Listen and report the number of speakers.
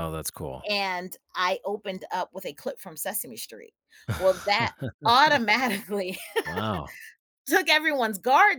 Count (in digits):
2